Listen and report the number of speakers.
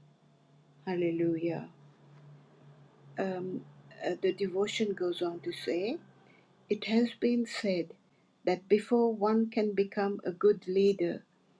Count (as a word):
one